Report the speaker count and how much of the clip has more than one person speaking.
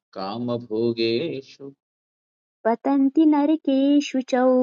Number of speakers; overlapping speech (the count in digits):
2, no overlap